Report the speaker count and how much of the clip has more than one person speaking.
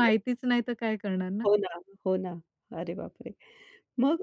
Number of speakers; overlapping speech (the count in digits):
2, about 4%